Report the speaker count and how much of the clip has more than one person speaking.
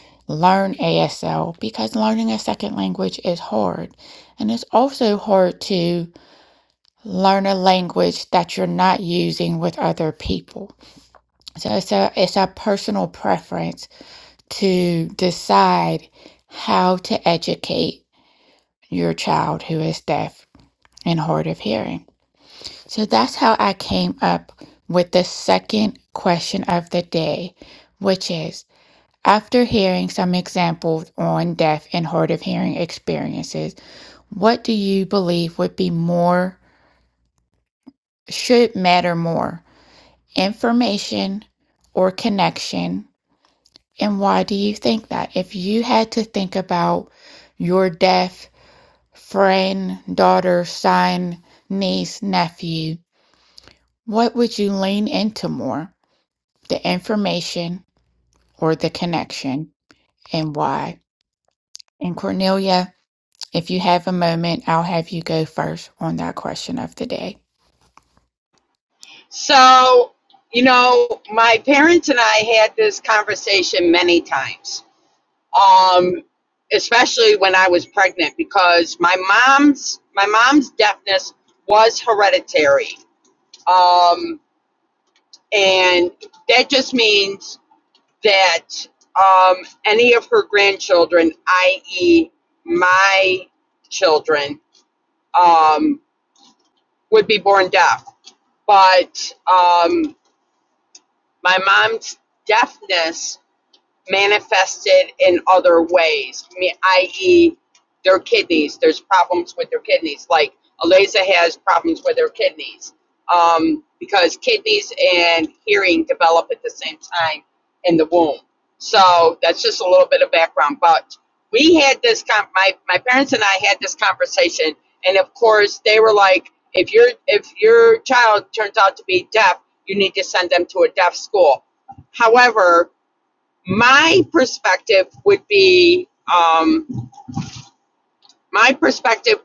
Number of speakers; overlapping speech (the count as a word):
two, no overlap